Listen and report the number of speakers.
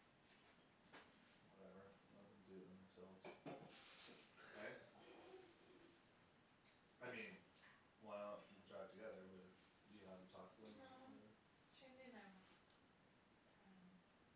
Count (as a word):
two